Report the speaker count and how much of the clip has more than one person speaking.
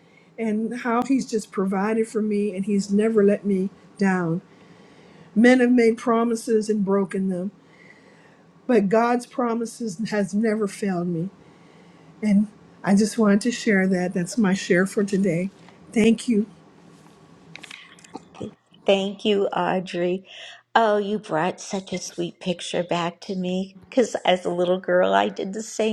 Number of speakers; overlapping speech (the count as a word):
two, no overlap